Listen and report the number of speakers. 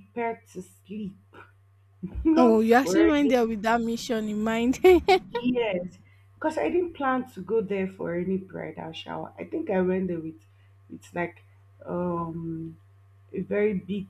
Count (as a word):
two